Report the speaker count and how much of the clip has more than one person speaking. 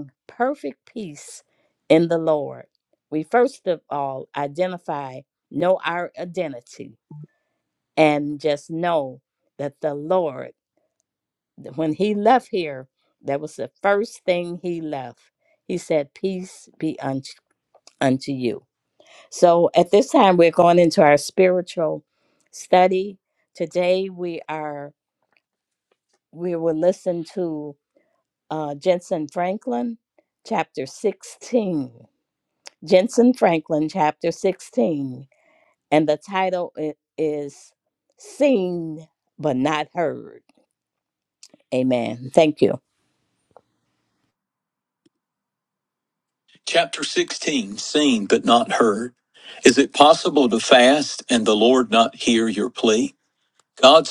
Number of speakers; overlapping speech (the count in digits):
2, no overlap